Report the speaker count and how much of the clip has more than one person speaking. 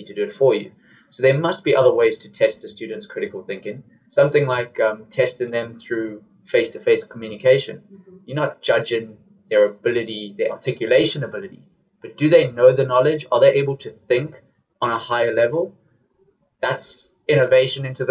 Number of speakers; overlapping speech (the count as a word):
one, no overlap